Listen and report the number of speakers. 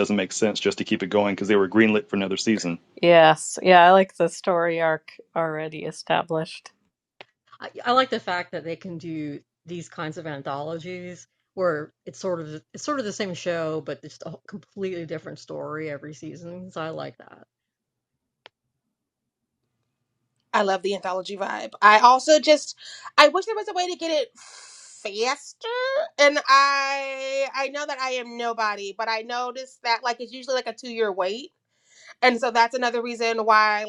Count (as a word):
four